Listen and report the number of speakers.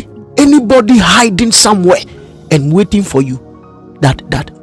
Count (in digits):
1